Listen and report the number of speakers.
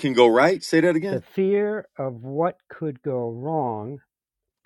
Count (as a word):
two